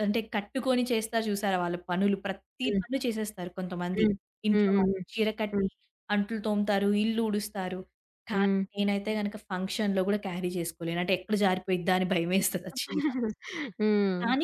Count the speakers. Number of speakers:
two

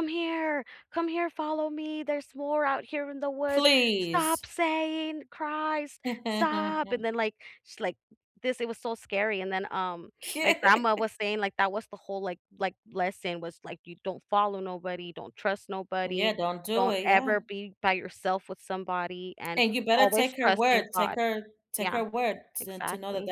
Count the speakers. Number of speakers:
two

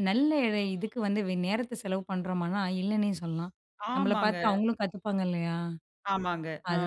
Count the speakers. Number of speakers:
two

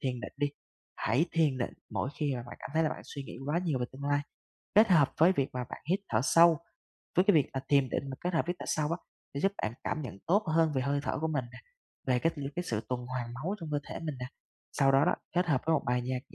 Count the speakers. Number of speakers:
one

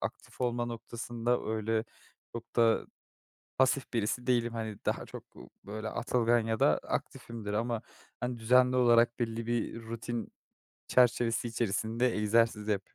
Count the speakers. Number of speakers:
one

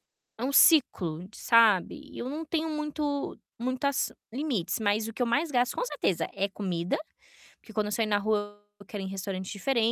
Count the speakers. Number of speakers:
one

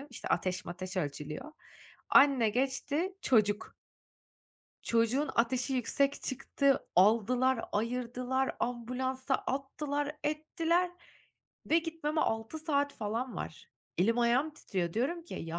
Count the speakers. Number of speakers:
one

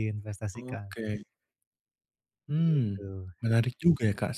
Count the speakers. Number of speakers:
two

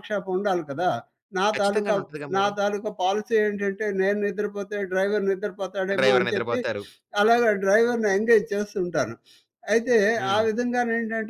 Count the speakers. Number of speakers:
two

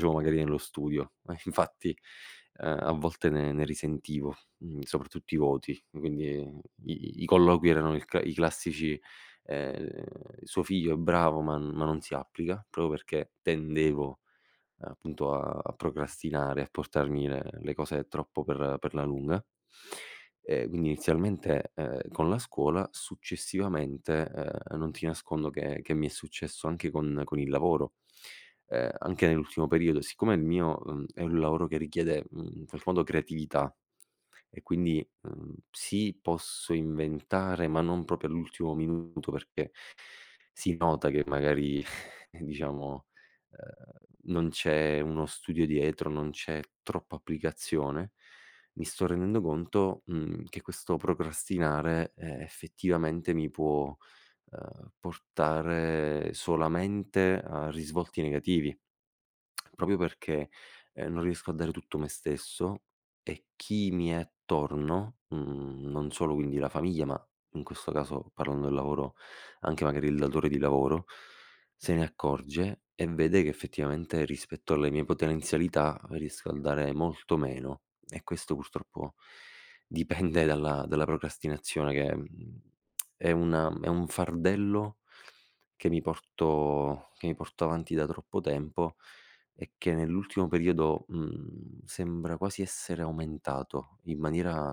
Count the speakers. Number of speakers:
one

